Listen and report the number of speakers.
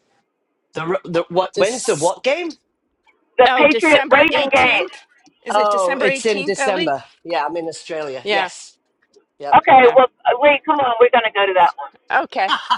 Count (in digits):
3